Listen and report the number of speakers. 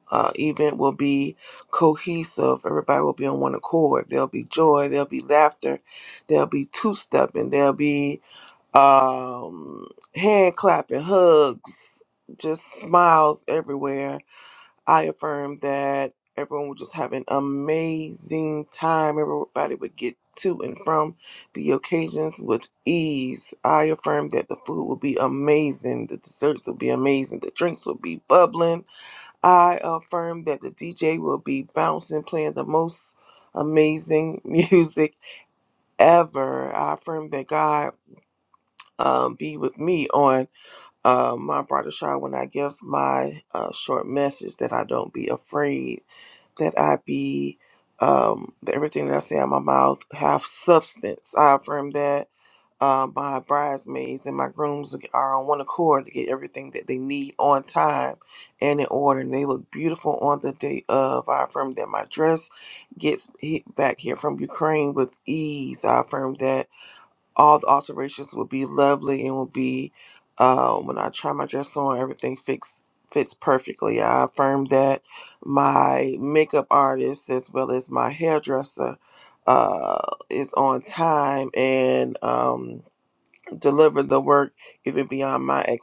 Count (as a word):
one